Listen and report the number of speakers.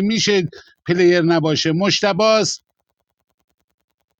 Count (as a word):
one